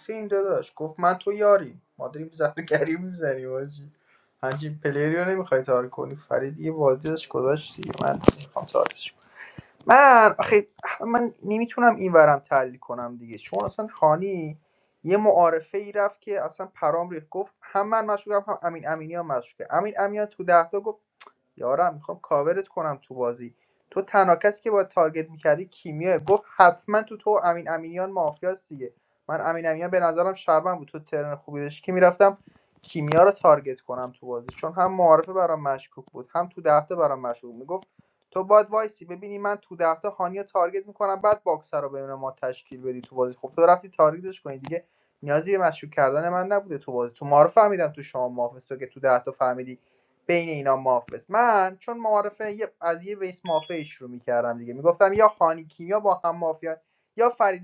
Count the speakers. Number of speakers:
1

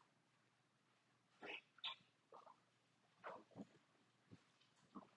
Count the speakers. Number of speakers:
0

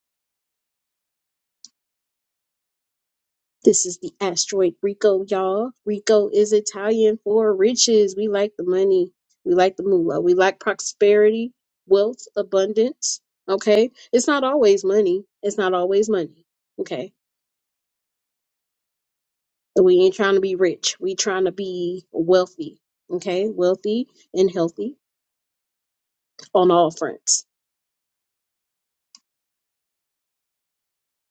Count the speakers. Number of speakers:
1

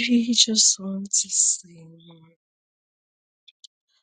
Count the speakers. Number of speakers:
1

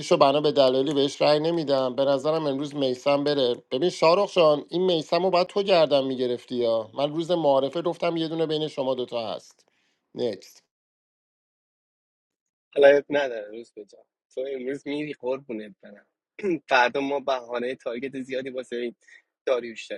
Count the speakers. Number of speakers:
2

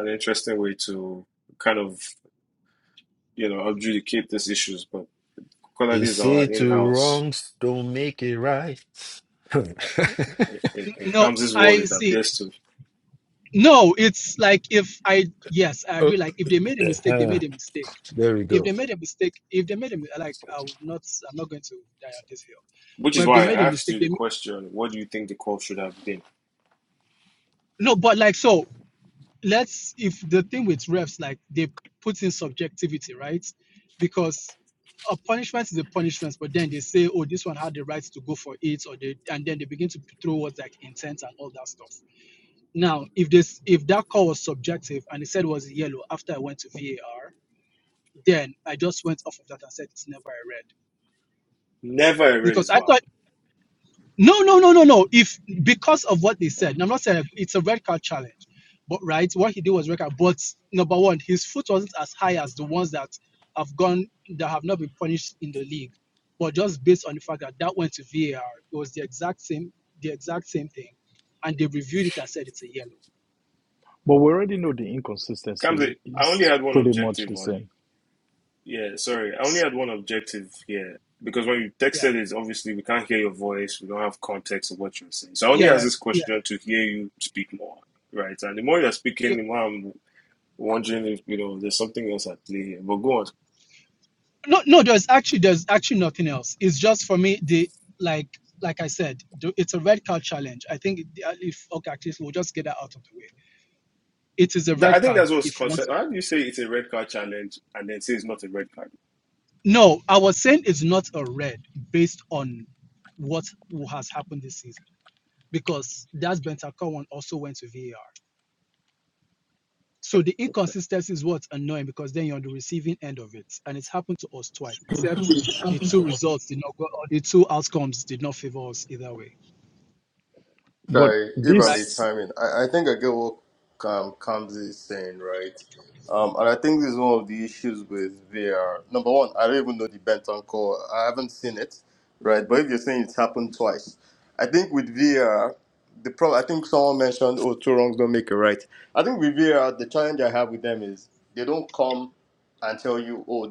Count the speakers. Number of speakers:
5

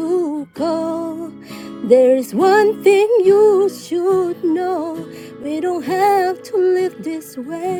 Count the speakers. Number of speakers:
1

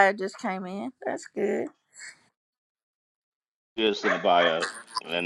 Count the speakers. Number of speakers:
2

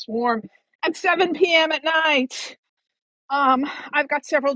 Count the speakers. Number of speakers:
1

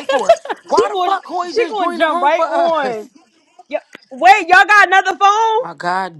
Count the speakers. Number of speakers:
2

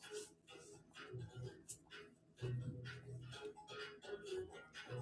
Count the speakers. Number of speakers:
0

